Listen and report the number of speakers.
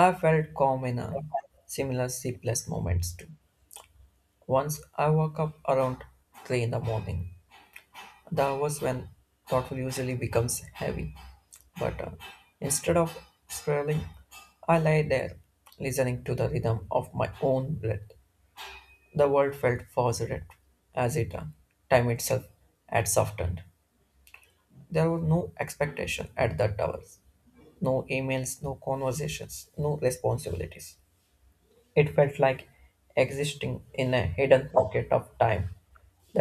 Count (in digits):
1